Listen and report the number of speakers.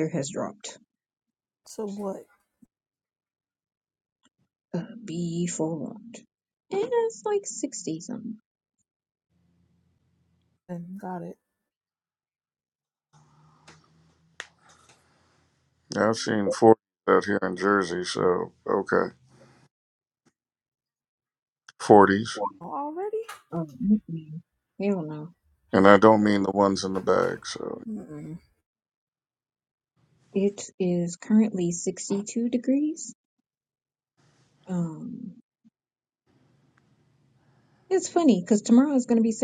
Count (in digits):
3